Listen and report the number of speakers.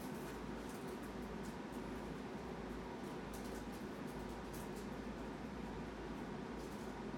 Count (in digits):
0